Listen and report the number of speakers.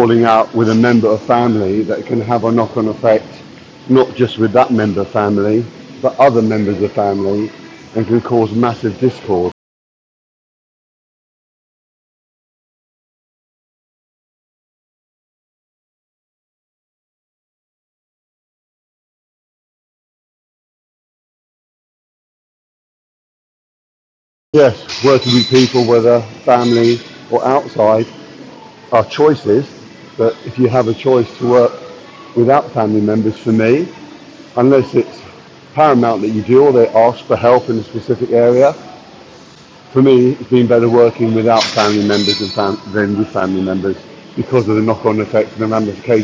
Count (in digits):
1